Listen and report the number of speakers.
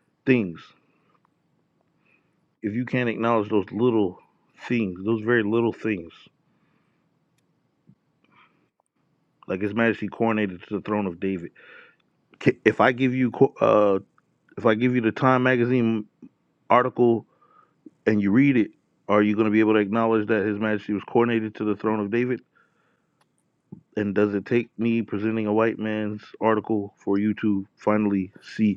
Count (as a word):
one